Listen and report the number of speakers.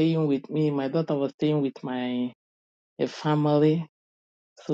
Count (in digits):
1